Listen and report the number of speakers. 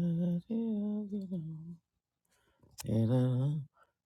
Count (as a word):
zero